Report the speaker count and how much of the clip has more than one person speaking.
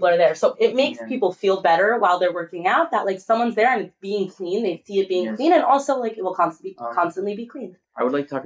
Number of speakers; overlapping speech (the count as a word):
two, about 13%